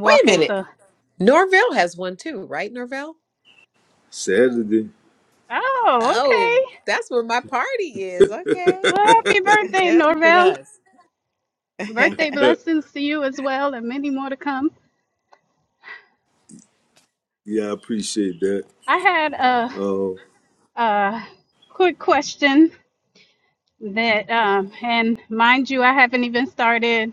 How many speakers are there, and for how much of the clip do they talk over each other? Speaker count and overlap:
three, about 7%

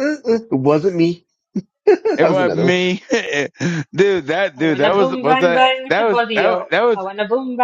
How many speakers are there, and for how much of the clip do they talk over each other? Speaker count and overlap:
three, about 39%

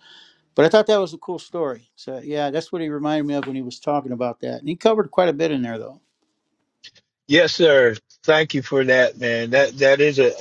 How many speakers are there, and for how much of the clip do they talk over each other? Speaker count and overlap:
two, no overlap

